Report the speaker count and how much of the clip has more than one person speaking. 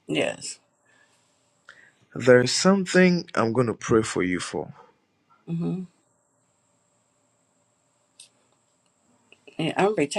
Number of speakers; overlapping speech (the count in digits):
2, no overlap